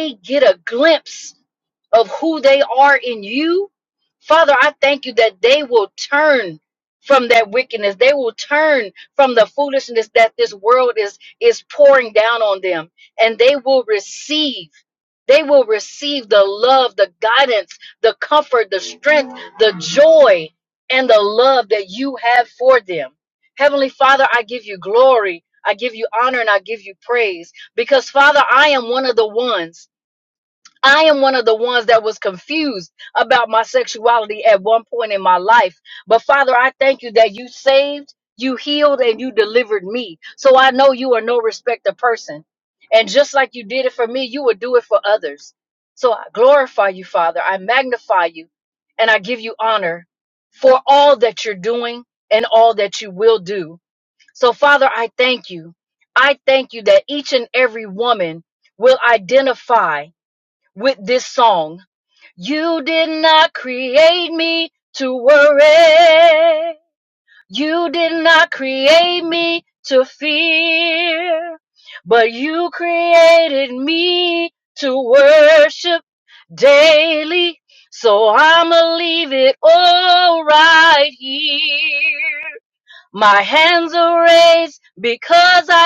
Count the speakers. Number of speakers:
1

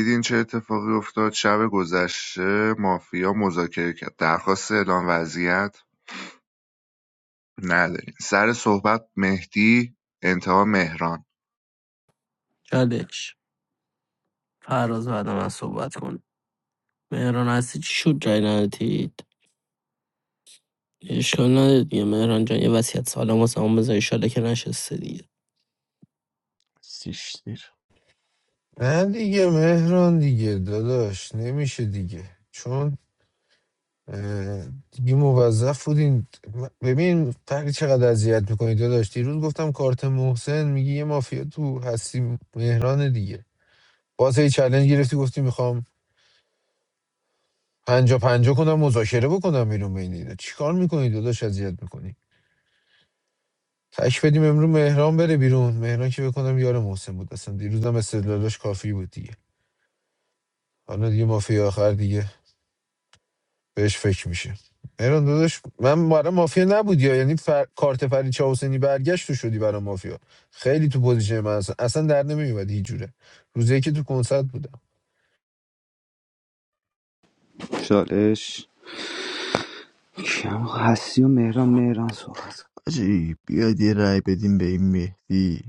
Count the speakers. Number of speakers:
5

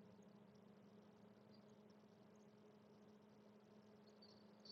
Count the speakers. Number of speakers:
0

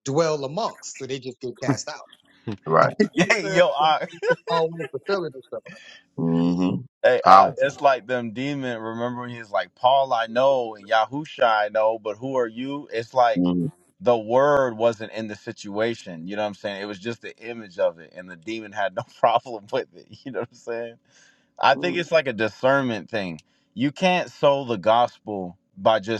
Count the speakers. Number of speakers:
3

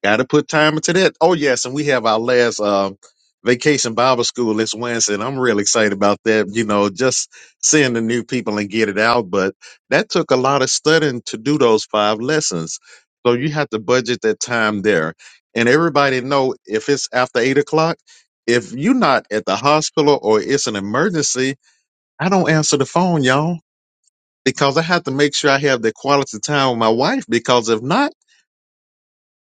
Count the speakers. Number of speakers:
1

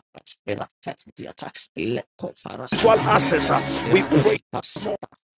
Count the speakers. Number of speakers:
2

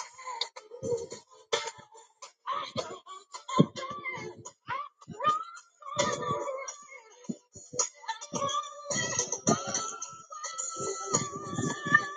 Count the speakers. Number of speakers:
0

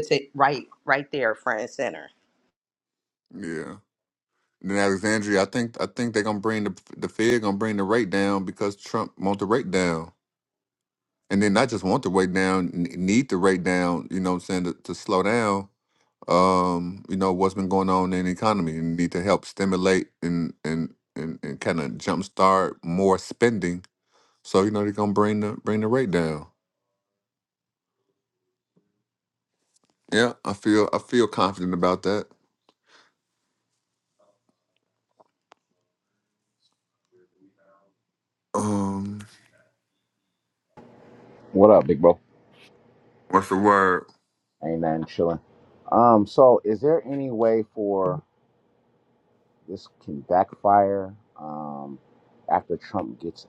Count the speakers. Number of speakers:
3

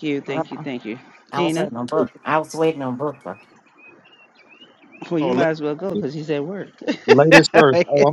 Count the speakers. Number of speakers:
3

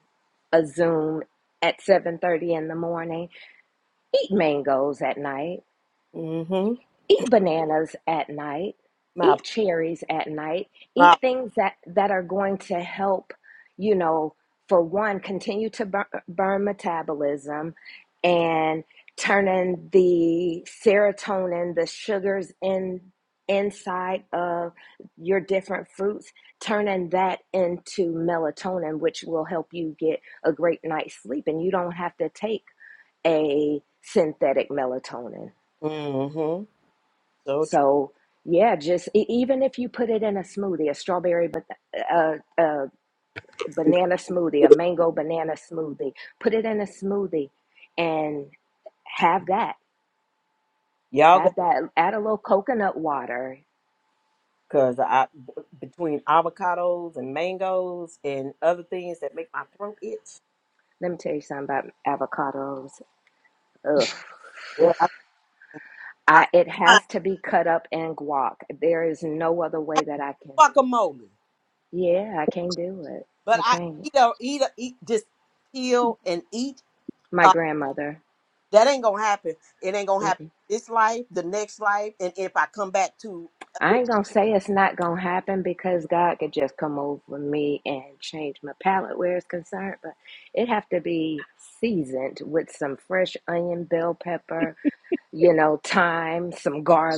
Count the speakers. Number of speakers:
2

